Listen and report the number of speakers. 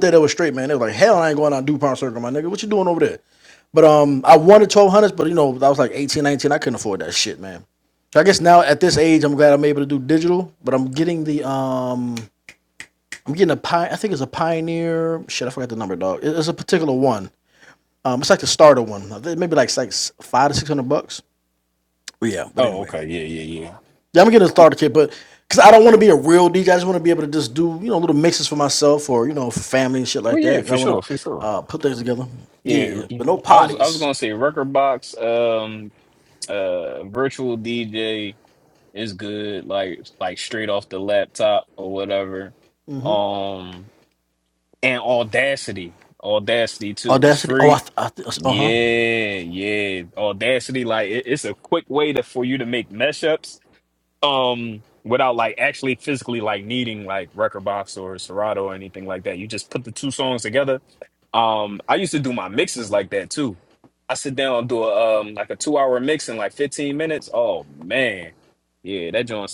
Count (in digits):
2